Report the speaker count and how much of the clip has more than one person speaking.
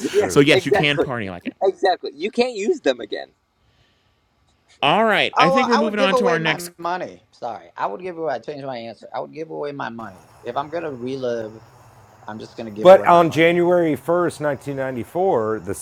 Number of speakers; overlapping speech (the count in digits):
4, about 19%